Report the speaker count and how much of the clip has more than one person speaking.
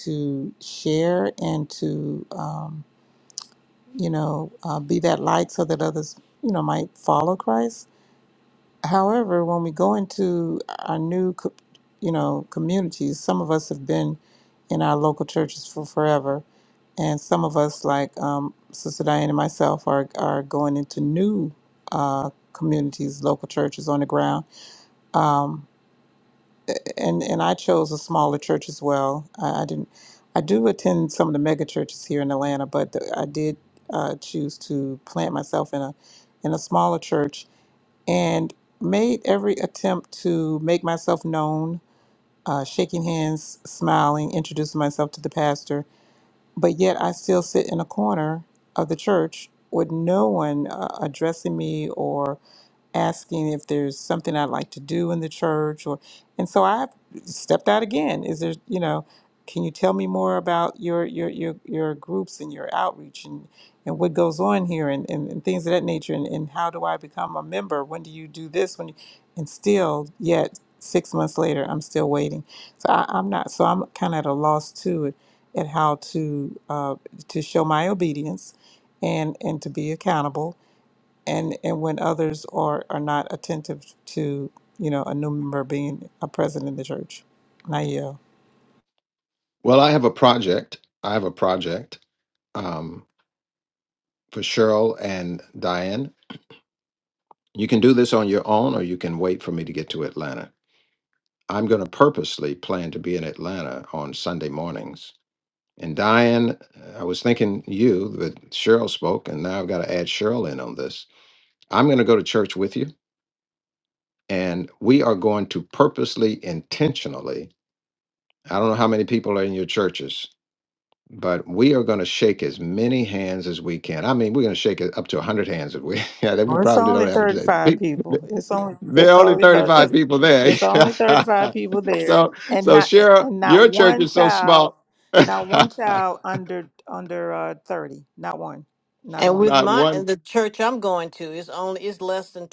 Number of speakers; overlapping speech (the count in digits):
3, about 5%